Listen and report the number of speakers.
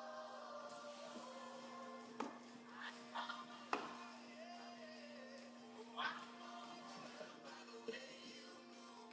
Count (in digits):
0